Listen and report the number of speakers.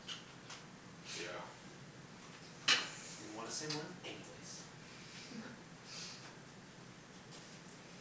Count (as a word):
one